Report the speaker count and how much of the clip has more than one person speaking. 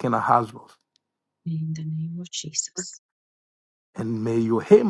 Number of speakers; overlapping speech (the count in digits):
2, no overlap